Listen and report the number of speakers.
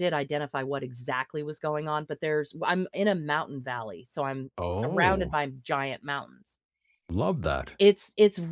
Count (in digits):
2